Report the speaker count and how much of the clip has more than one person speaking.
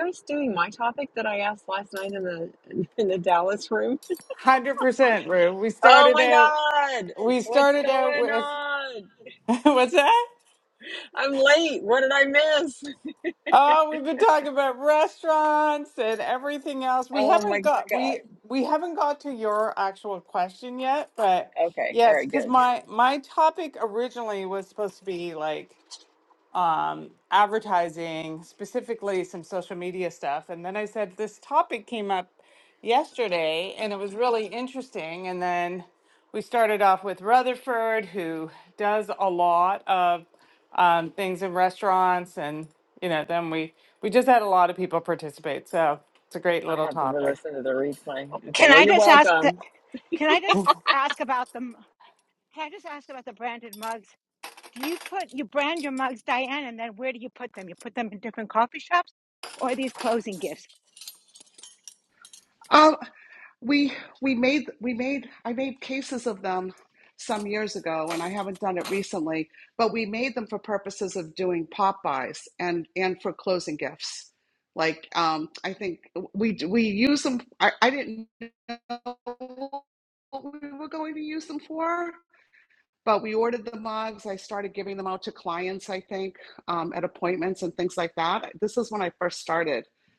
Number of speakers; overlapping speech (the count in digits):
4, about 6%